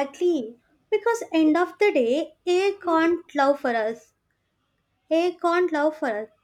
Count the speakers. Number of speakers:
one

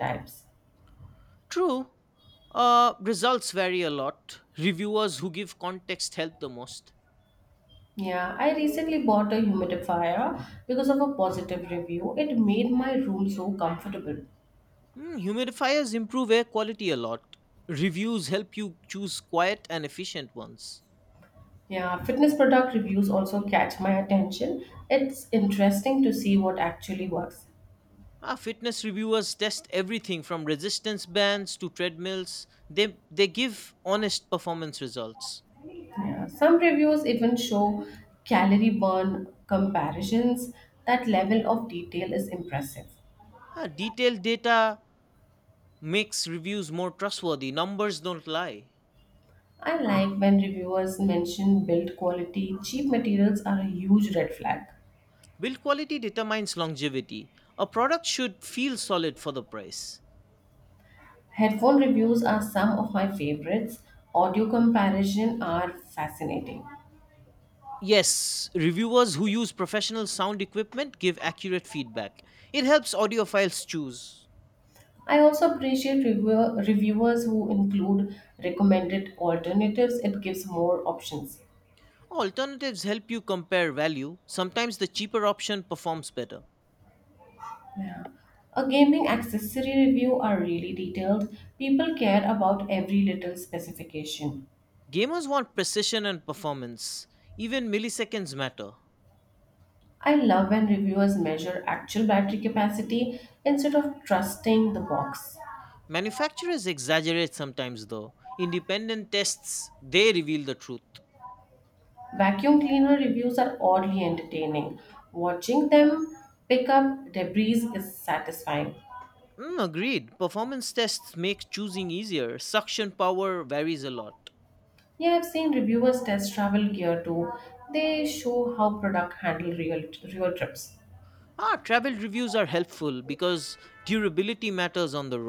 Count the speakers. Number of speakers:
two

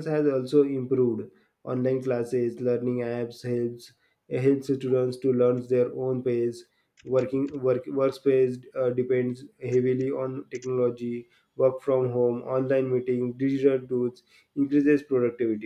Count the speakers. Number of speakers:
one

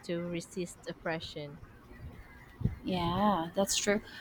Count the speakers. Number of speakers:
two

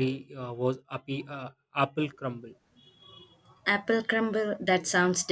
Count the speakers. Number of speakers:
two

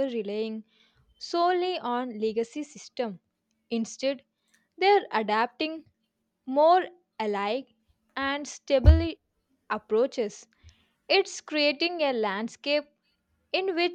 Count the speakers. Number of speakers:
one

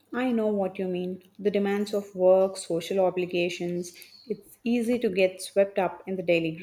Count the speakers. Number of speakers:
one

